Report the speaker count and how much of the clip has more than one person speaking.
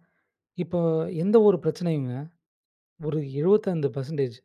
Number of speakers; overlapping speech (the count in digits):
1, no overlap